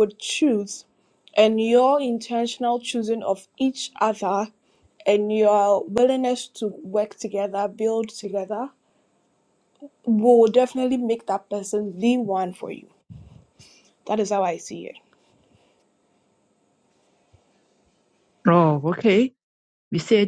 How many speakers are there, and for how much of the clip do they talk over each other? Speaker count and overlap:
two, no overlap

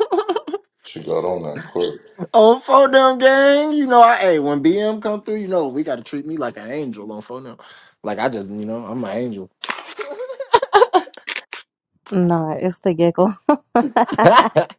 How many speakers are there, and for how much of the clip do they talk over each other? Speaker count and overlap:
three, no overlap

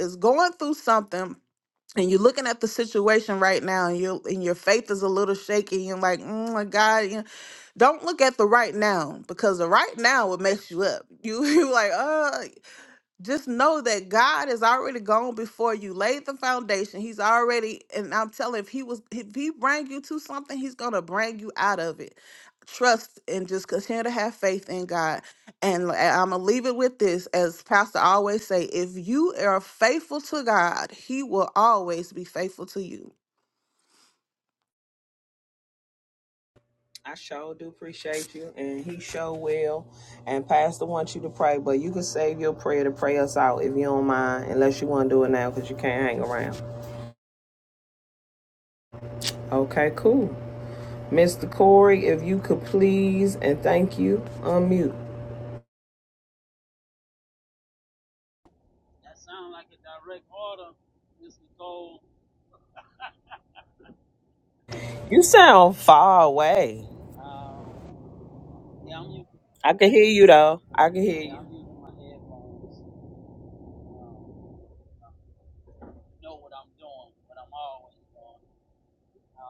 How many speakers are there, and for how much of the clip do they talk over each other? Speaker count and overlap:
three, under 1%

